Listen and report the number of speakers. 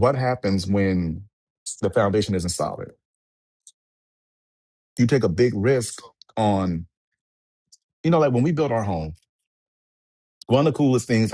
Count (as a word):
one